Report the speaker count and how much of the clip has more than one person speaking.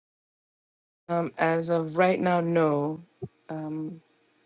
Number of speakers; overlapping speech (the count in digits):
1, no overlap